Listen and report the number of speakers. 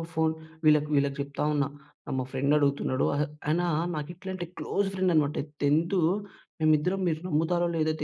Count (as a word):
one